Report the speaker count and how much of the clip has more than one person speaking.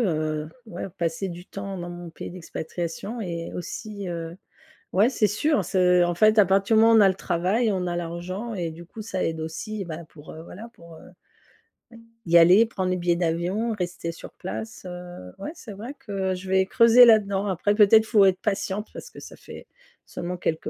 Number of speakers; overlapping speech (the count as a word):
one, no overlap